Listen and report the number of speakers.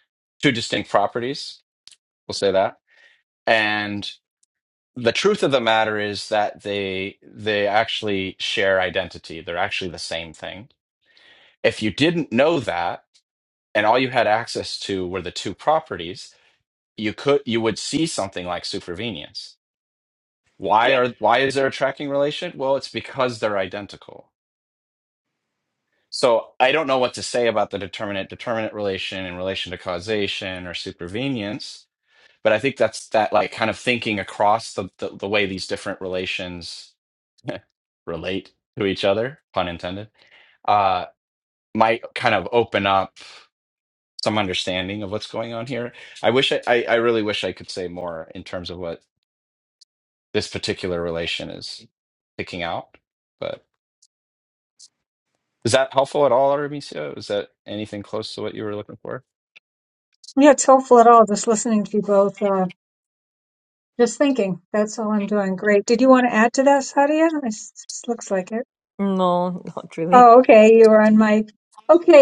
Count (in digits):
3